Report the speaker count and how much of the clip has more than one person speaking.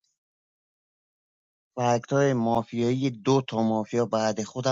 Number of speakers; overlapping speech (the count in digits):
1, no overlap